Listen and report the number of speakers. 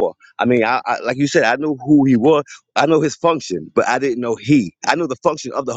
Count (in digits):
1